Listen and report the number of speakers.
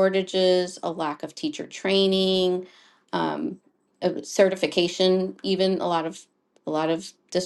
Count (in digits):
1